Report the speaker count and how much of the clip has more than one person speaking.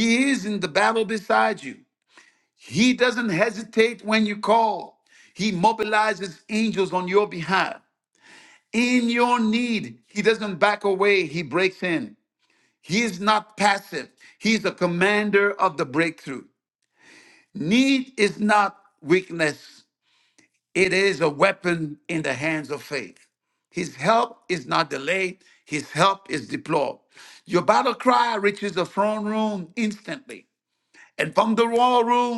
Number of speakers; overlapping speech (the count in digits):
1, no overlap